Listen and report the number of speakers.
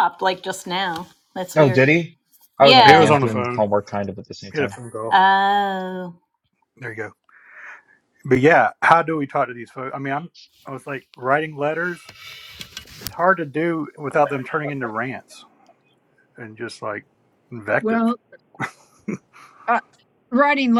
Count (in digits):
4